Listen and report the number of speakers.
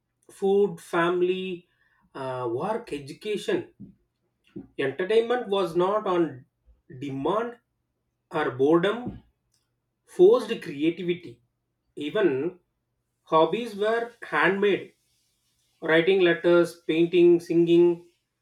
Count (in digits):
1